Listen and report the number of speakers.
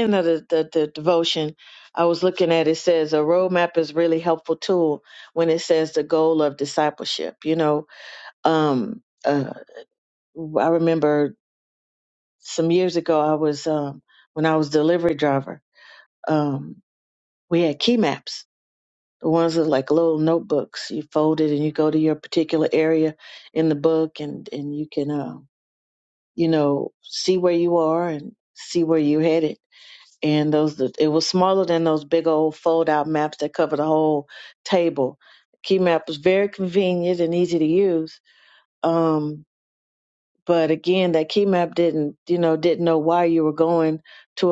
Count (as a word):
one